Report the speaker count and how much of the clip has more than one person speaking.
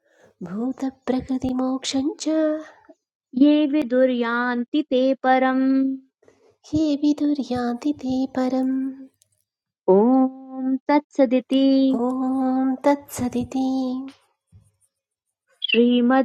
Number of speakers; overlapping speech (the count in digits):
2, no overlap